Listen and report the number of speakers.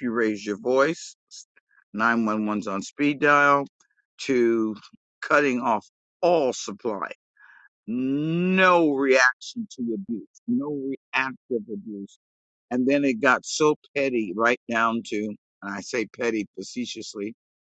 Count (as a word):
one